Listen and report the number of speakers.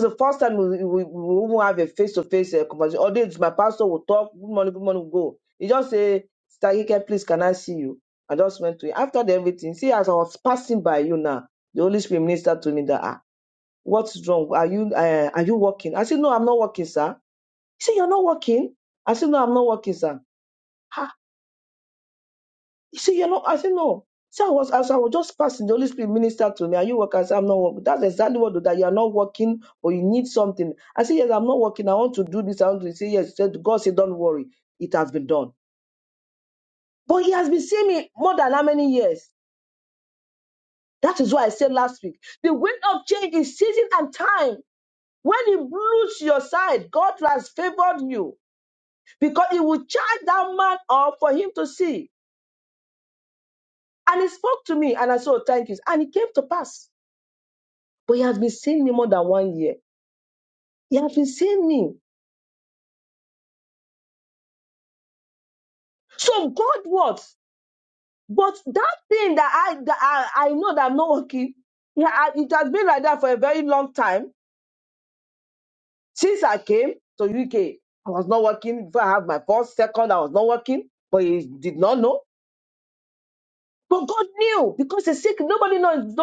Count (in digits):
1